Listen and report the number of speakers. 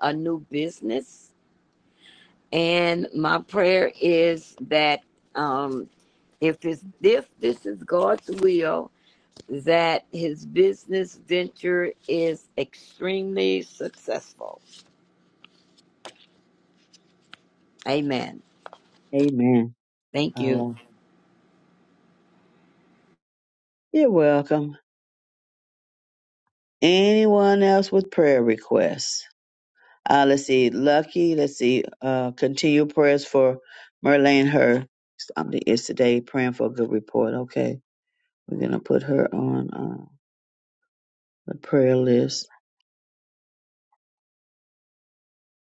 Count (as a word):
two